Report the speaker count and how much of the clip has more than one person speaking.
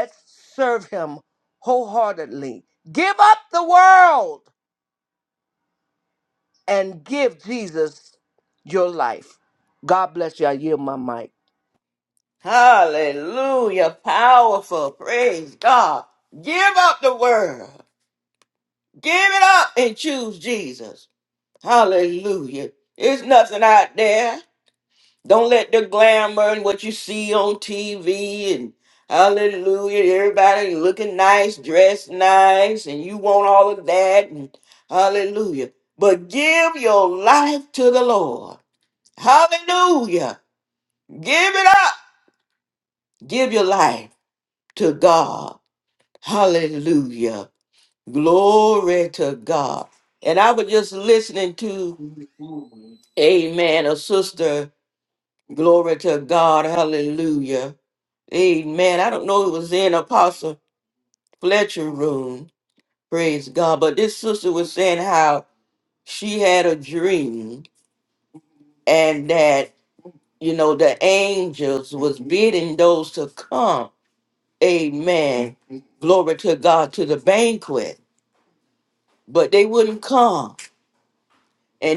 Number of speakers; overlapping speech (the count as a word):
two, no overlap